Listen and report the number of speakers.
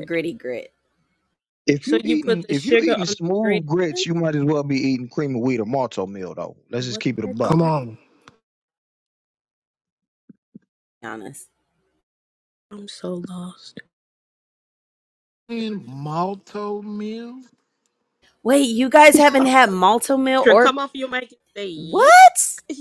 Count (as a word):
four